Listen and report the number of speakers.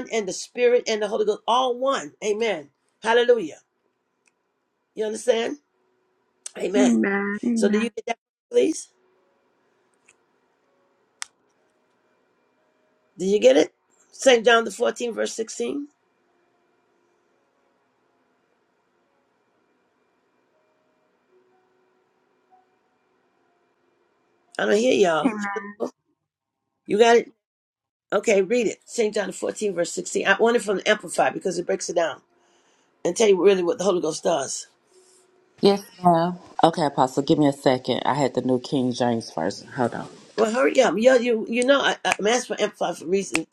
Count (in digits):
3